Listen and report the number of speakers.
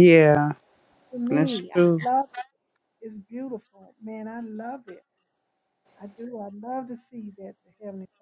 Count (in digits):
2